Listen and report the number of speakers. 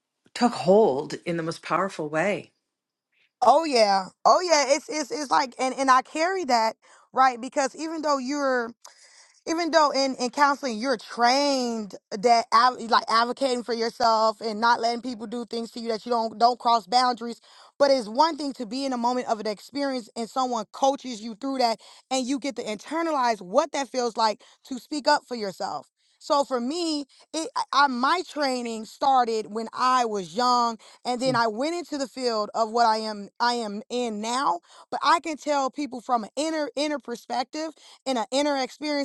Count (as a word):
two